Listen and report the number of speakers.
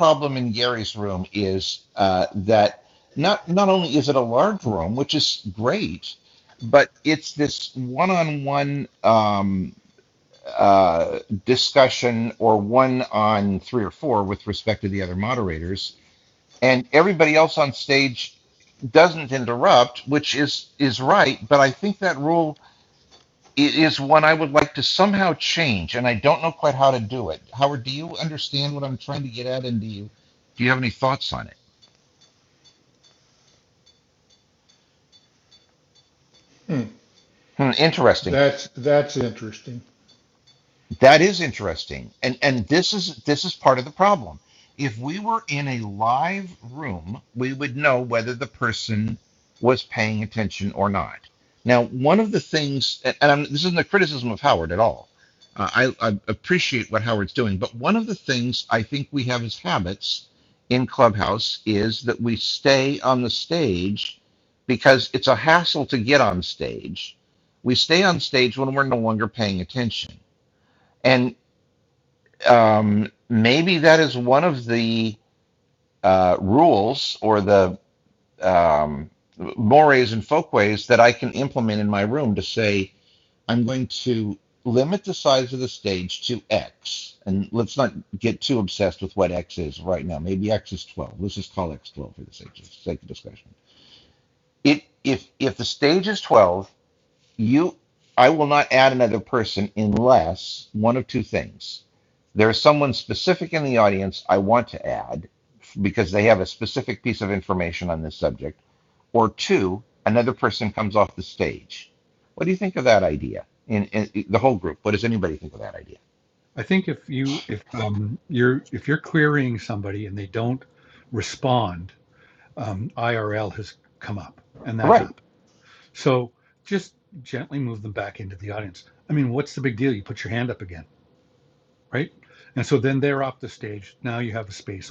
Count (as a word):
three